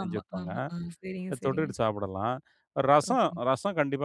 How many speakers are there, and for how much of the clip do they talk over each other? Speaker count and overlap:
2, about 27%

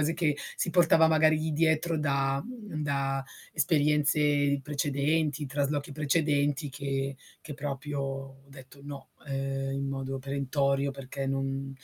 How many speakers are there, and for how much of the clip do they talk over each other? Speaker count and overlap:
1, no overlap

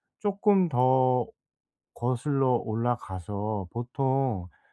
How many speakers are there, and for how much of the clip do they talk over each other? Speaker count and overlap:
1, no overlap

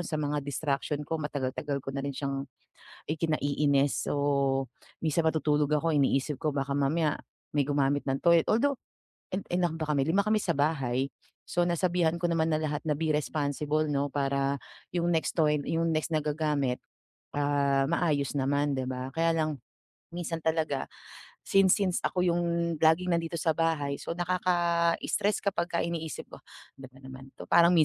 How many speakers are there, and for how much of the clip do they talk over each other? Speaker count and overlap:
1, no overlap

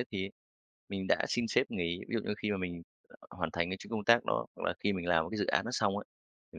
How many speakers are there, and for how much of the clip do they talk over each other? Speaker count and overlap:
1, no overlap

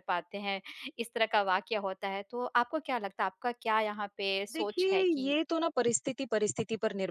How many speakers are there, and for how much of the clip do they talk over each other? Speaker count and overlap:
2, about 12%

